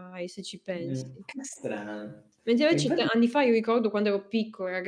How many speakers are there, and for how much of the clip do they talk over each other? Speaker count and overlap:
two, about 17%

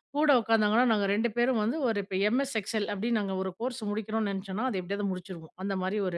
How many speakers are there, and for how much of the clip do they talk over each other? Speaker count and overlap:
one, no overlap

